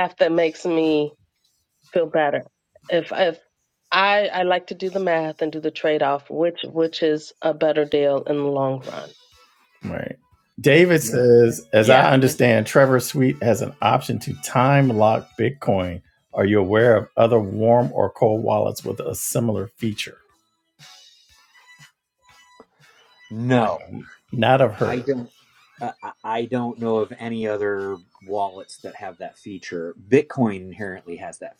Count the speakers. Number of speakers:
3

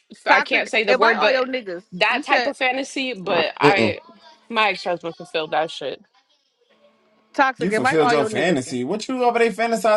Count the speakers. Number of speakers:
3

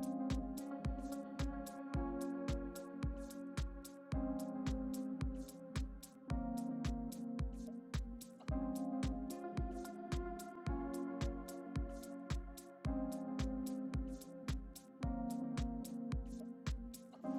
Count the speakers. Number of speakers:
0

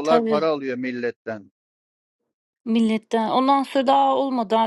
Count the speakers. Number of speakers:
2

